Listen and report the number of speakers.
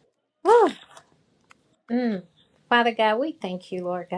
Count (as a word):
one